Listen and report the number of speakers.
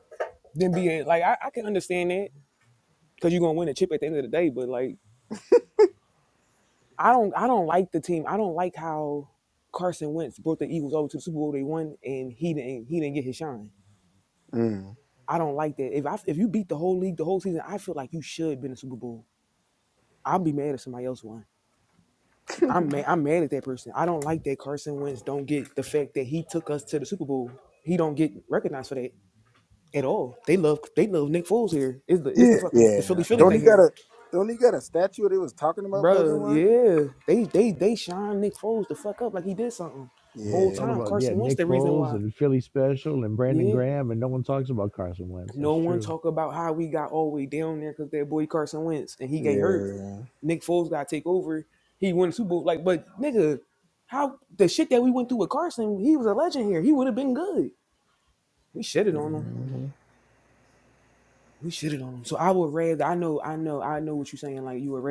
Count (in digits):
3